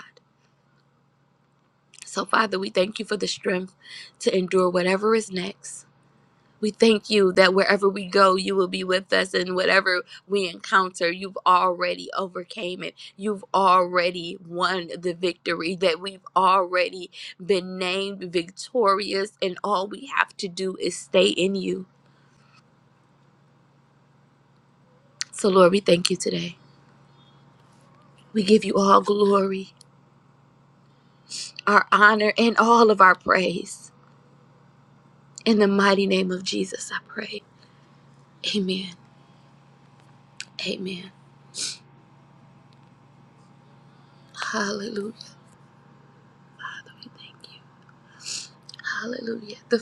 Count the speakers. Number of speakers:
one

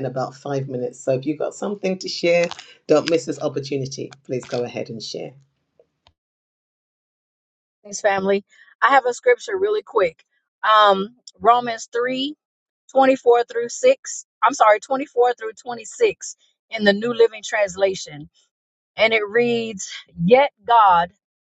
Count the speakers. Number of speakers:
two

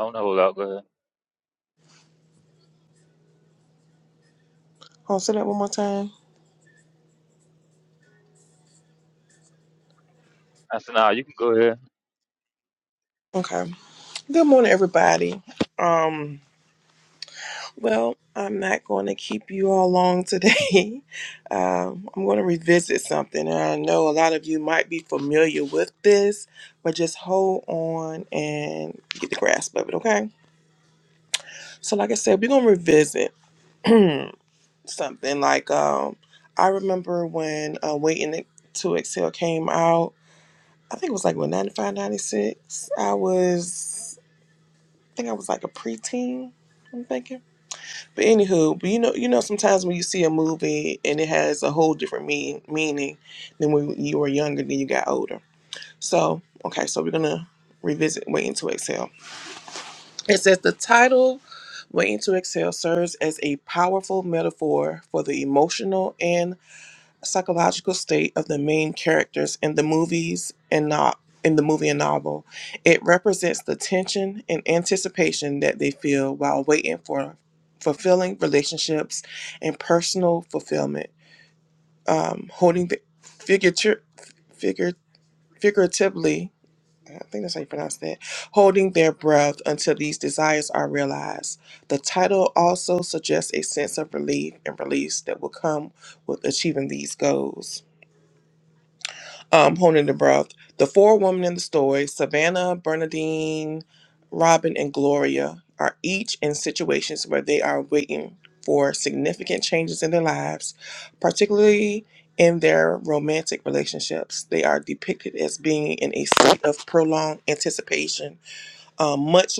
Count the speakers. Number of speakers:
two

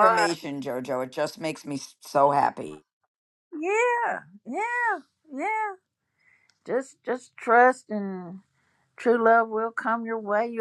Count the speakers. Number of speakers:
two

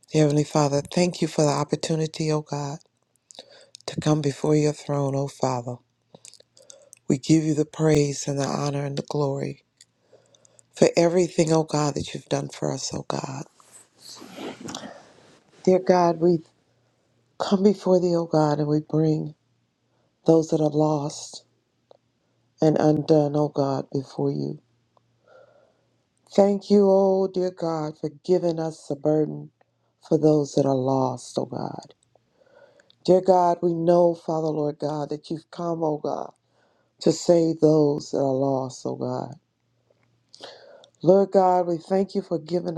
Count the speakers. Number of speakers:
one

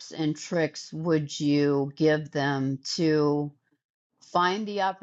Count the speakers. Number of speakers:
one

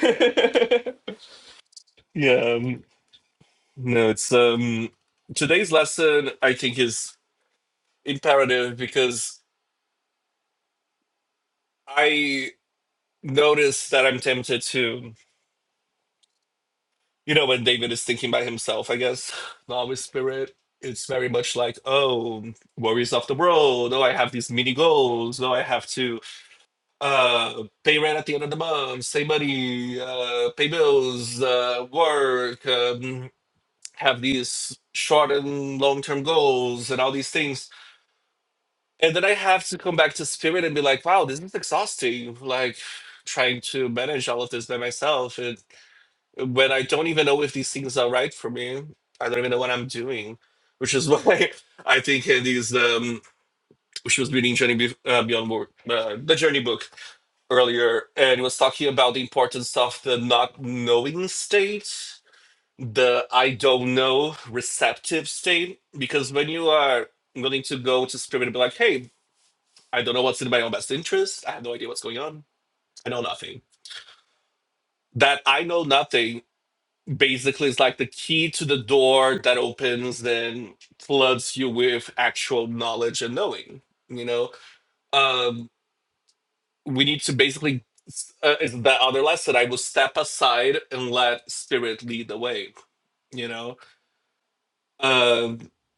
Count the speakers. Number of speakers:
one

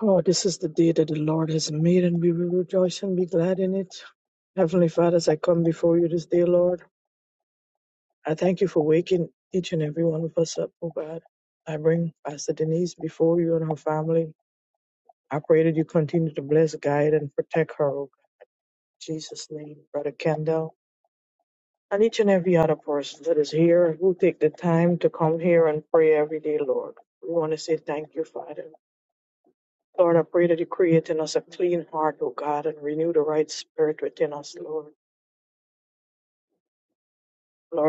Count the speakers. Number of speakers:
one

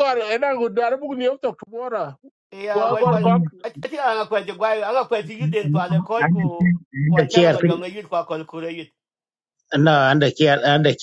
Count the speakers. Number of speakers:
three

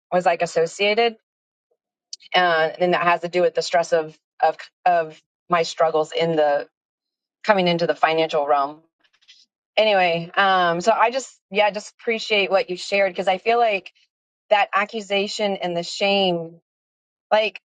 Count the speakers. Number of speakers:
one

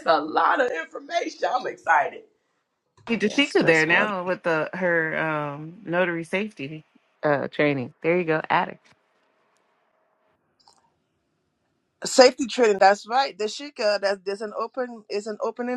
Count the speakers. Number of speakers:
three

